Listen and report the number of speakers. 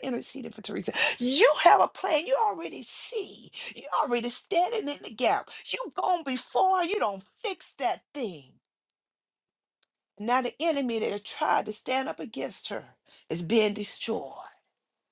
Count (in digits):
1